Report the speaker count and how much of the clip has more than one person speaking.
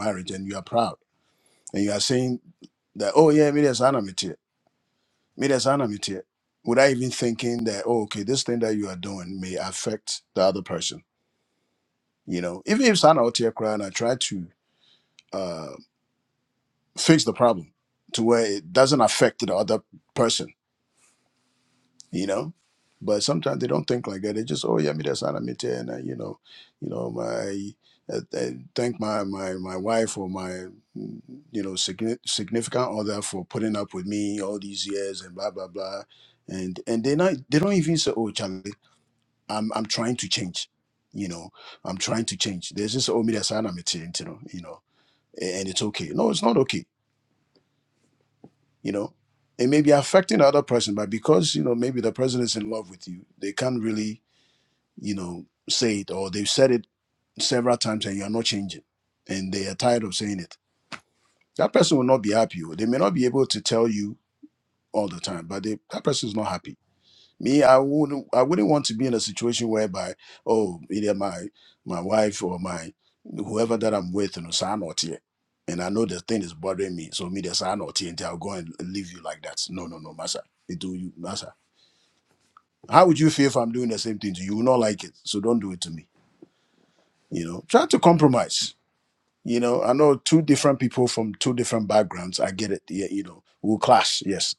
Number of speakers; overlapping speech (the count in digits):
1, no overlap